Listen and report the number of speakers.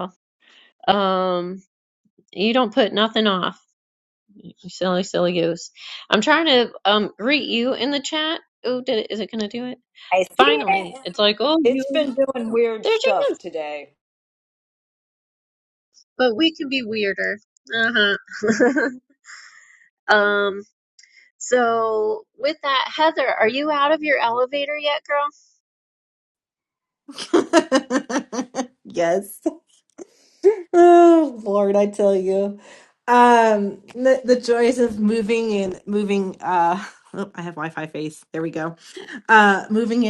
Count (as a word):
three